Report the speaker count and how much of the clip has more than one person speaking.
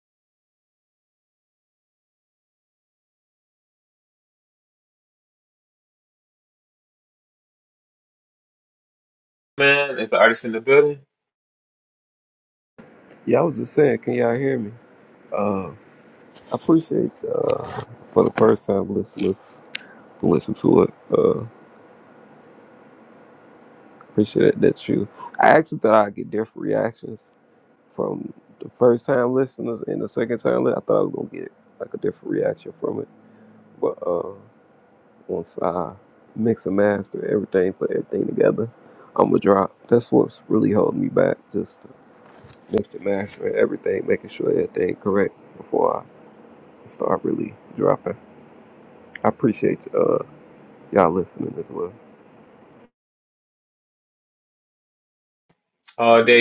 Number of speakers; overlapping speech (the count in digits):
2, no overlap